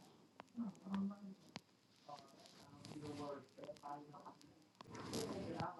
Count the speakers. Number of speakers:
0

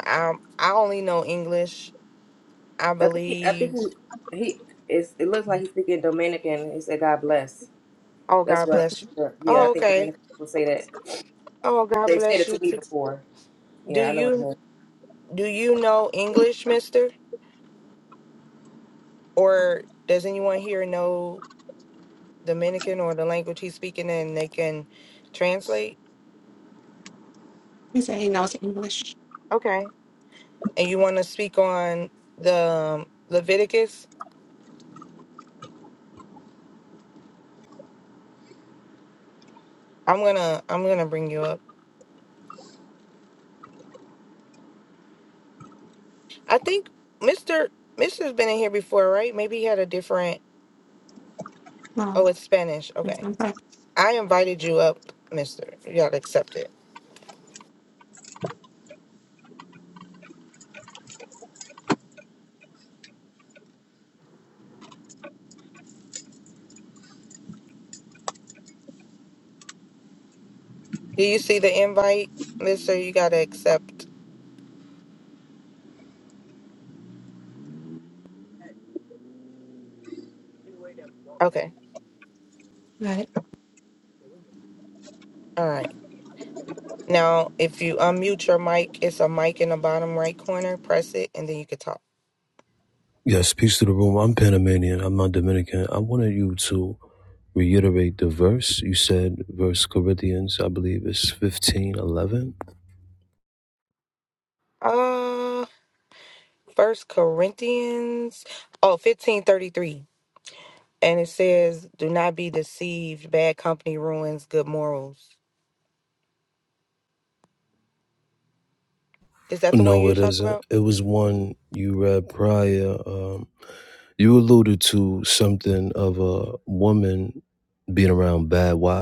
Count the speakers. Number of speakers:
4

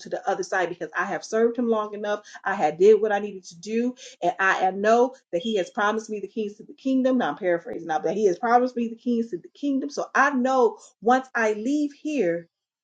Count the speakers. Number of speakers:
1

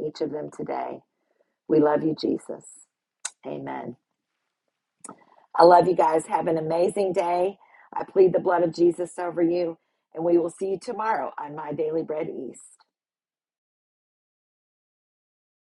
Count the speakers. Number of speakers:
1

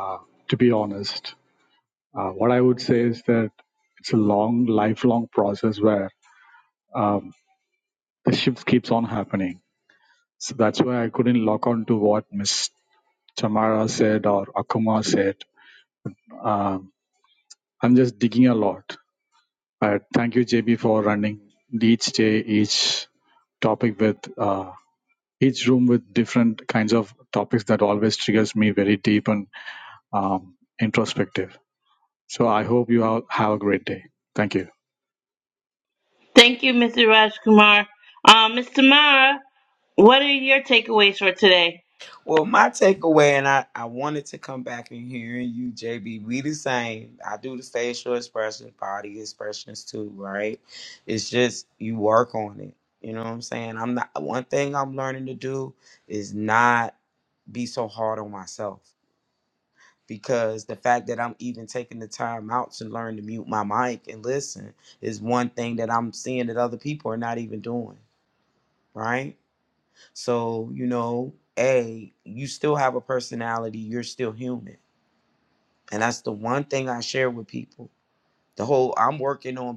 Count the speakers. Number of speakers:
3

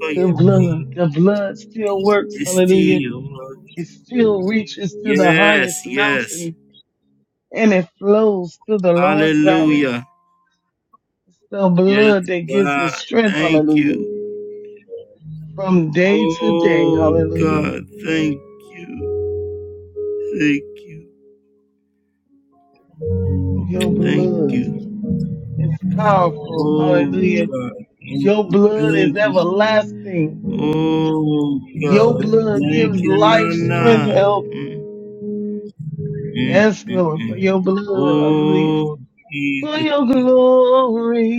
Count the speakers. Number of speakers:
2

